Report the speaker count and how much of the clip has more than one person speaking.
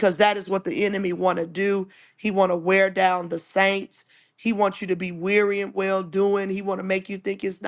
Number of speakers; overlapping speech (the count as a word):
one, no overlap